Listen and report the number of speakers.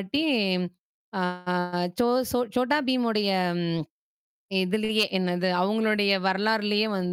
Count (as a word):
one